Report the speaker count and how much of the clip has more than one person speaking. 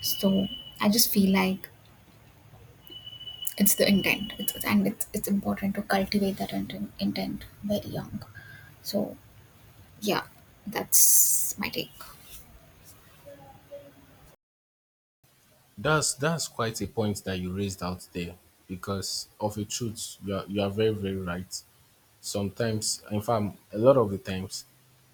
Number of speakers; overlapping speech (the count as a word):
two, no overlap